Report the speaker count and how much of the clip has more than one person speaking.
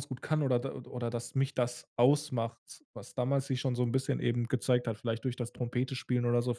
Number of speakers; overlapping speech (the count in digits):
1, no overlap